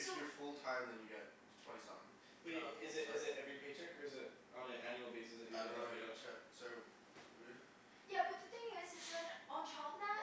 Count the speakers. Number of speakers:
3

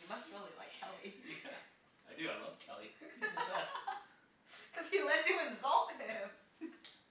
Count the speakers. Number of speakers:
2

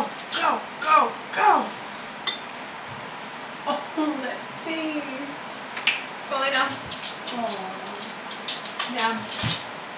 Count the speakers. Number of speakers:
2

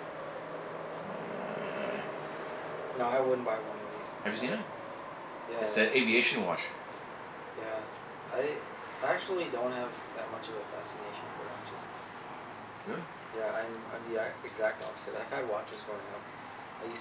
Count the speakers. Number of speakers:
2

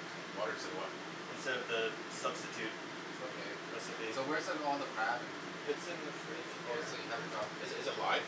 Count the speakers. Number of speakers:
3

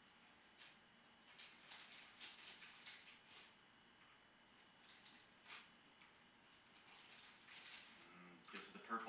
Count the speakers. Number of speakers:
1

